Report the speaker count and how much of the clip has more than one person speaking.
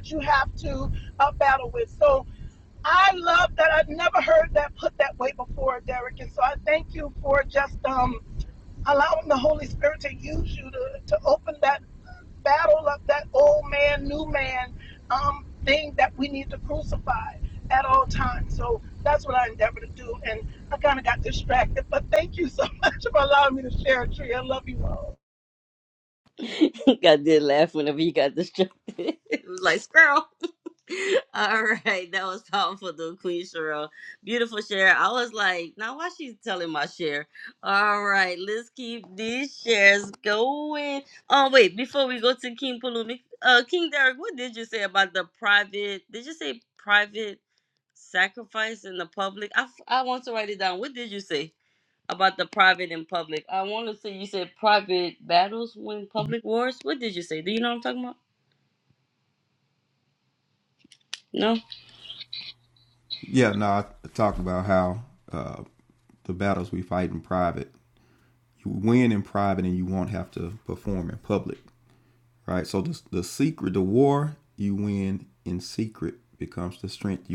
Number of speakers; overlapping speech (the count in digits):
3, no overlap